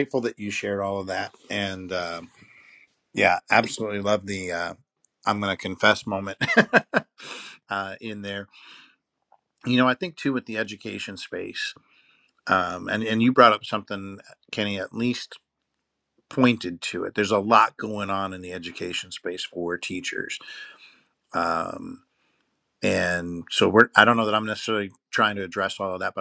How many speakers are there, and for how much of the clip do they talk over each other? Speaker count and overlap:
one, no overlap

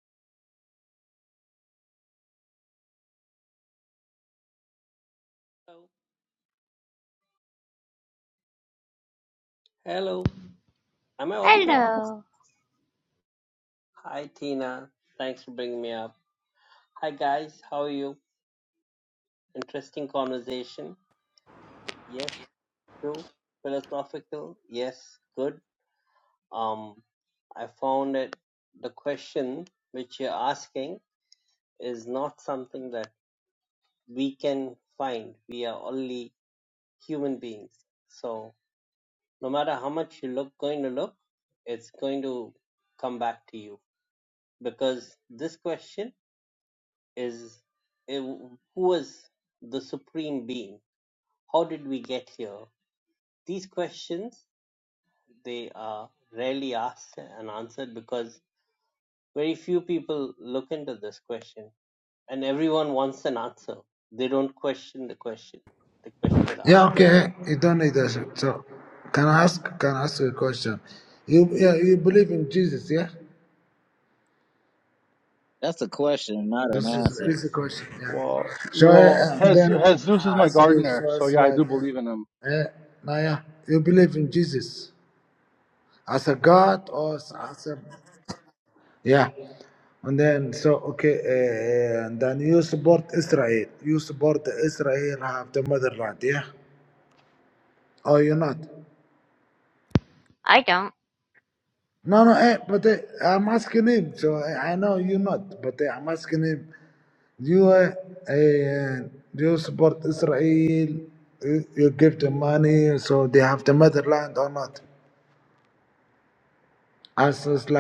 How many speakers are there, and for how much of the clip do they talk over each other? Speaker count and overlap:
five, about 4%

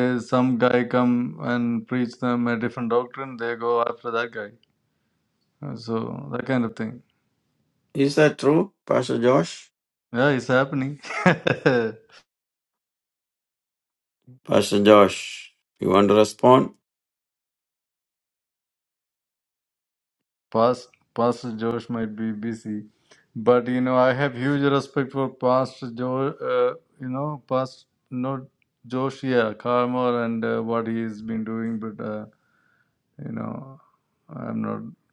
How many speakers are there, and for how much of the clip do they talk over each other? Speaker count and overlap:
two, no overlap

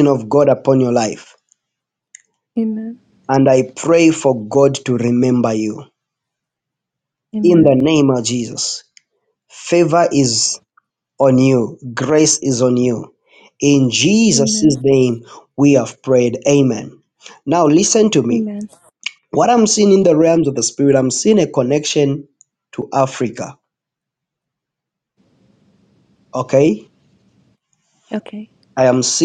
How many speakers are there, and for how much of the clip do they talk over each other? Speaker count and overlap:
two, about 3%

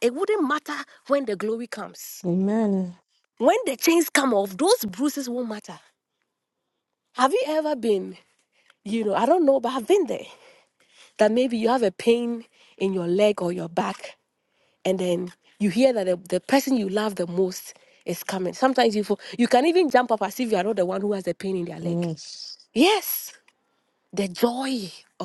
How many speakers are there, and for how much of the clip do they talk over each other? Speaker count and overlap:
two, about 1%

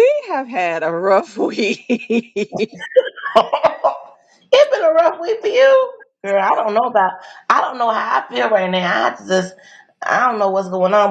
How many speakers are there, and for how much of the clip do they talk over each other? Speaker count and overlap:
two, no overlap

